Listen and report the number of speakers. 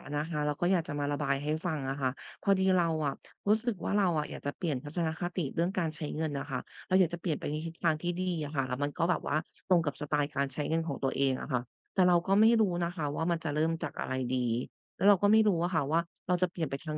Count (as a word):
one